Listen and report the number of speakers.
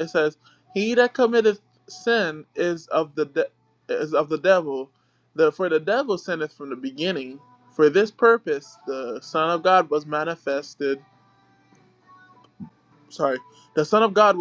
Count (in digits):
1